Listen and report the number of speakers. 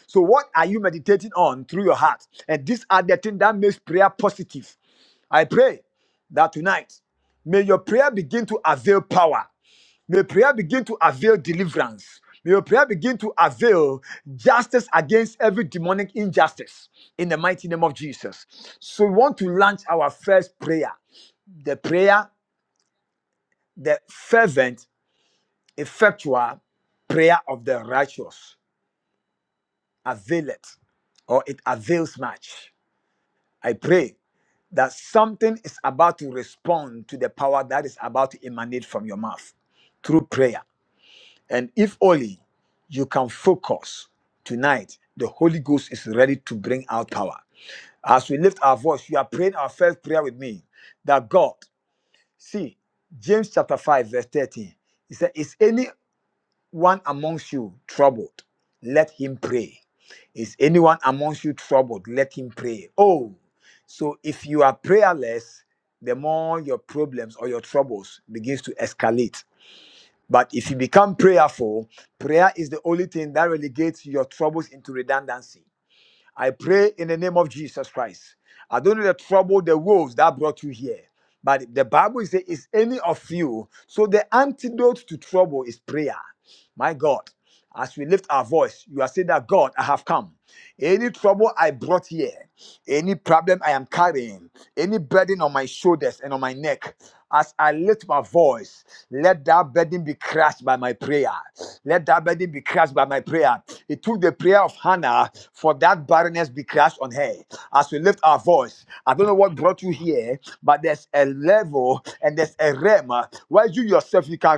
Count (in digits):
1